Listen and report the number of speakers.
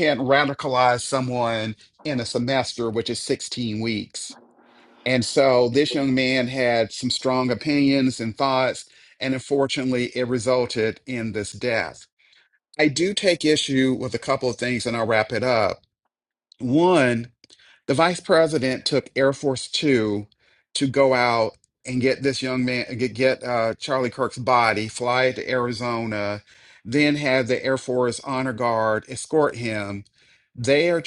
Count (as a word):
one